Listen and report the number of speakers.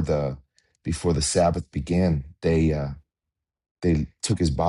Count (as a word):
one